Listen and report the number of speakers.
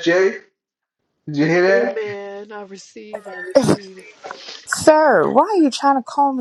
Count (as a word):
three